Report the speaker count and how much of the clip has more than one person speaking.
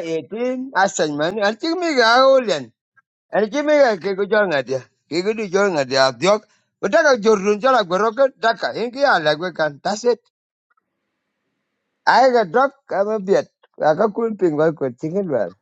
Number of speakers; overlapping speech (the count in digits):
1, no overlap